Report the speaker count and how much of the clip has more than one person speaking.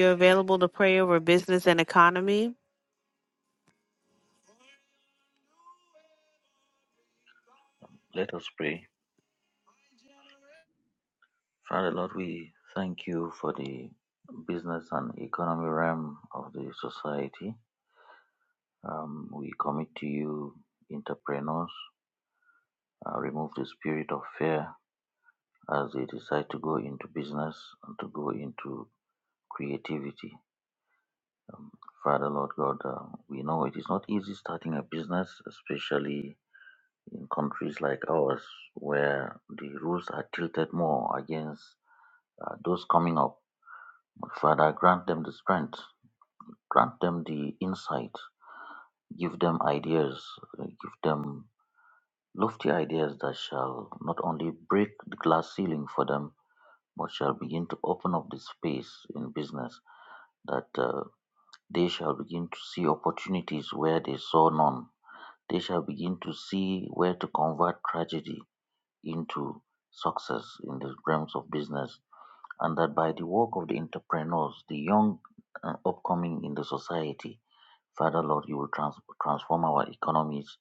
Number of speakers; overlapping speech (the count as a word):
two, no overlap